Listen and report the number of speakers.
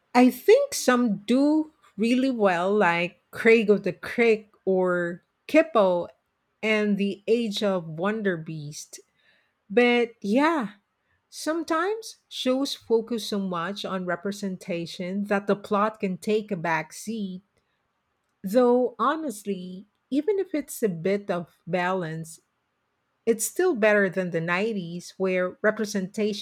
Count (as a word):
one